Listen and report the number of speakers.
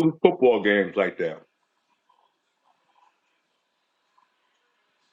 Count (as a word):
one